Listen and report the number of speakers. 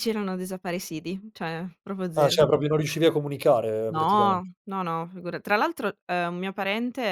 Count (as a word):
two